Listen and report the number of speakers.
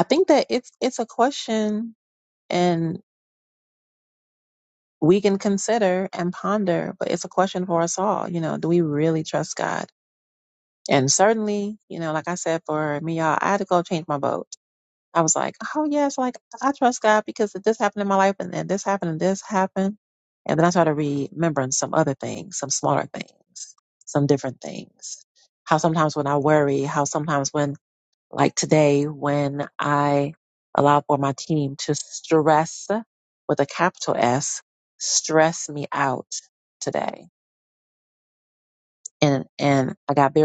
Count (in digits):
1